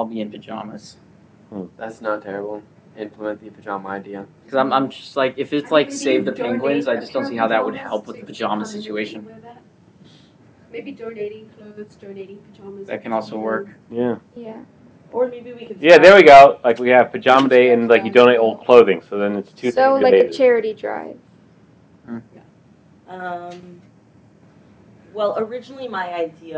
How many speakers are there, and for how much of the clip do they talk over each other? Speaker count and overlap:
6, about 28%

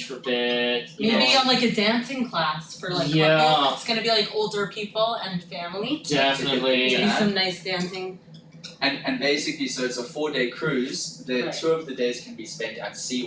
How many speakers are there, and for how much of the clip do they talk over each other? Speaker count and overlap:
3, about 21%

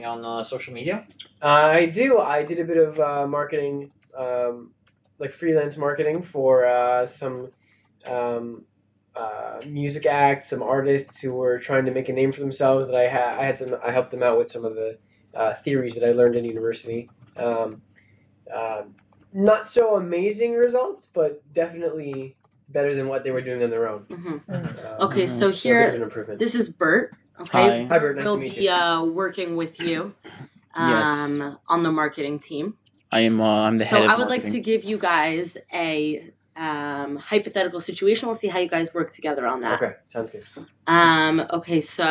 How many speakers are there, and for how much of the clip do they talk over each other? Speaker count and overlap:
4, about 9%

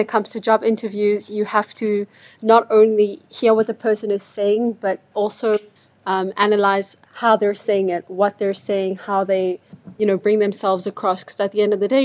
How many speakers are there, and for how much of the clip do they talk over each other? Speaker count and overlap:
1, no overlap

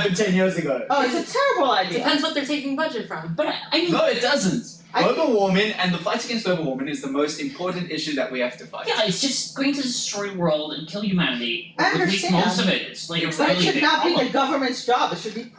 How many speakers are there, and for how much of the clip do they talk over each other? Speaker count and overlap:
4, about 18%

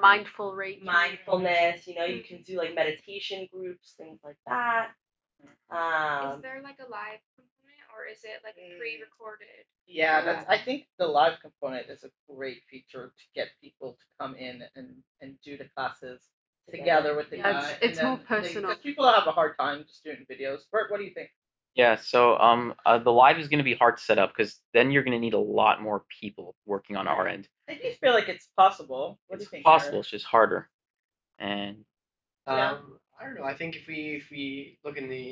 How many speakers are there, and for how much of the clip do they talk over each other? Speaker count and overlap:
6, about 17%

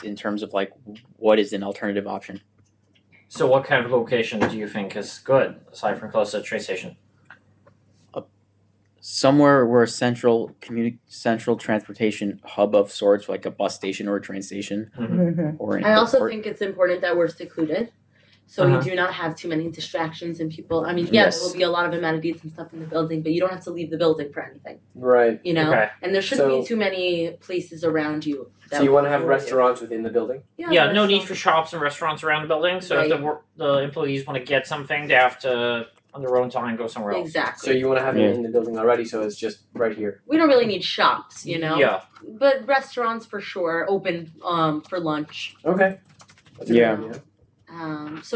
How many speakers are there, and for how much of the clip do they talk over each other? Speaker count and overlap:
4, about 12%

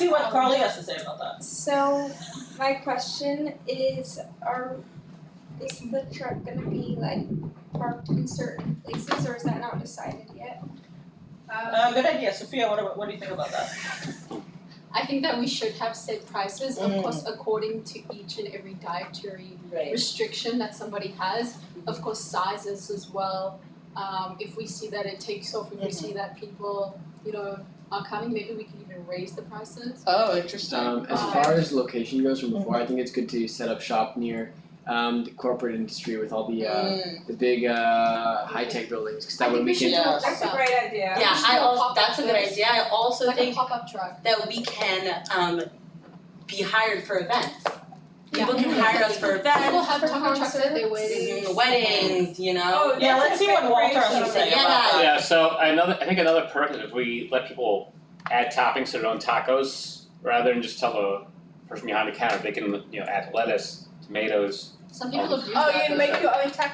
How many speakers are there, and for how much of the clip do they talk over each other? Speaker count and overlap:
7, about 21%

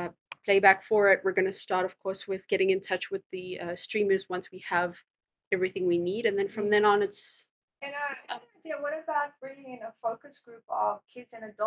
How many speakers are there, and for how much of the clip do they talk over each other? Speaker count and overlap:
2, about 5%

